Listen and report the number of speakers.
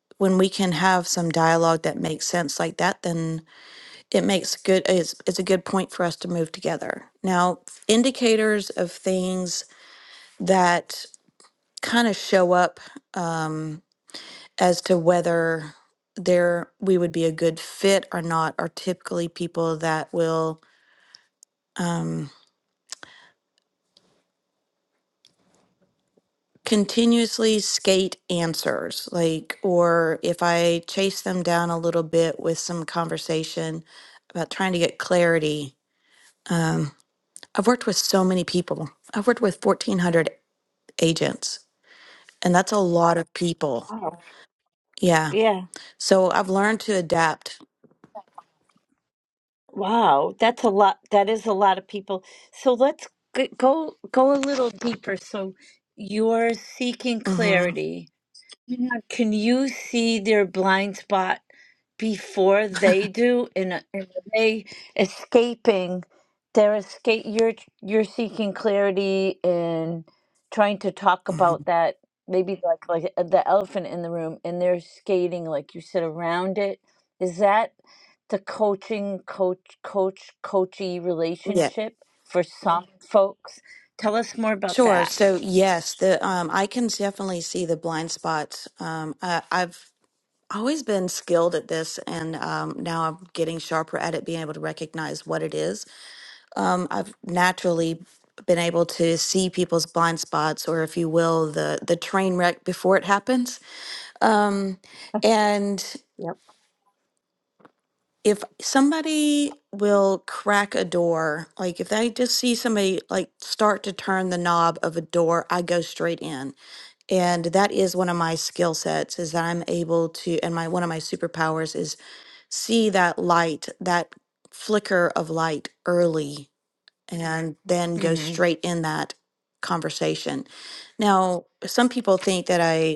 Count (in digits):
2